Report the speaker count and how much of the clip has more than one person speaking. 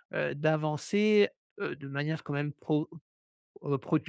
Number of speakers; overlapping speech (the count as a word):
one, no overlap